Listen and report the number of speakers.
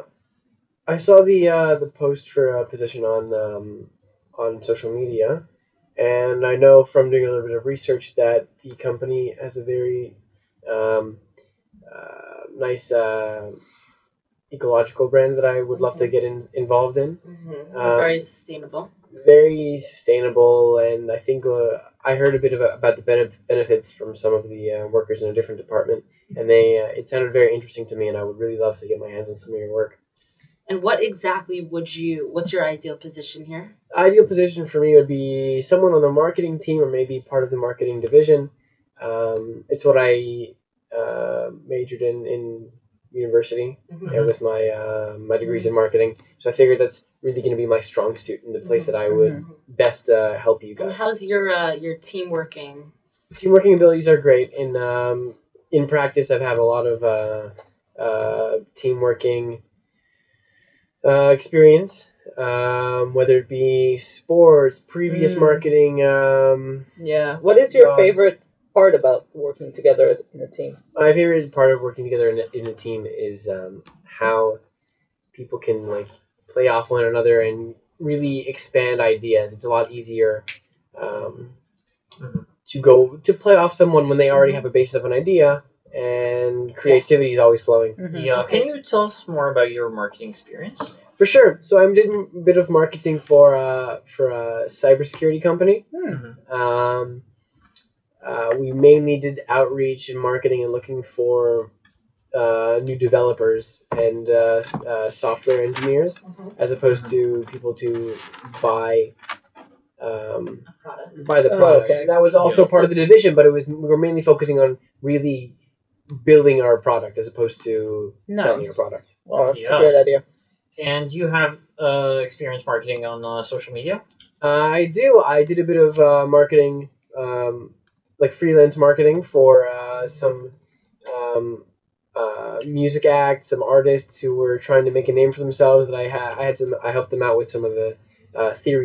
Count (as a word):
four